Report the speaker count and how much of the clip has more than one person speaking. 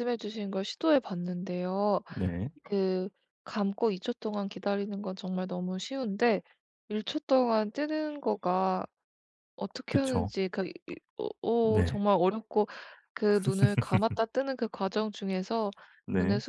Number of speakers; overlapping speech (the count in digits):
2, about 6%